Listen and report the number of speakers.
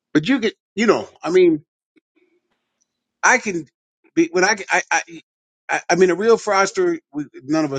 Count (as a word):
one